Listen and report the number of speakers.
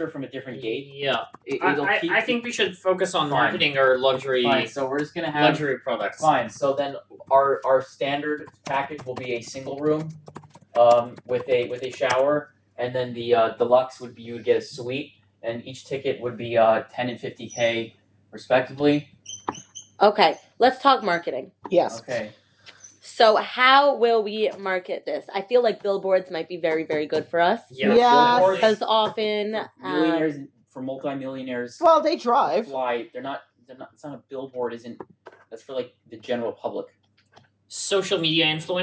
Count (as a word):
four